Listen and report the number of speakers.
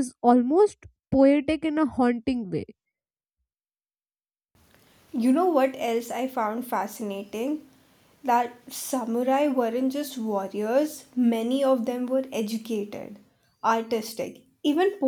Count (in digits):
2